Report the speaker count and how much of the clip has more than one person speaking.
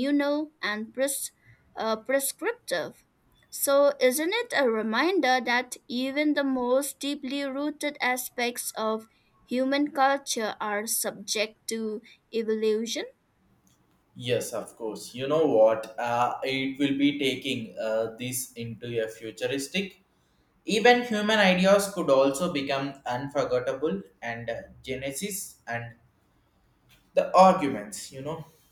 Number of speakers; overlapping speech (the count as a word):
two, no overlap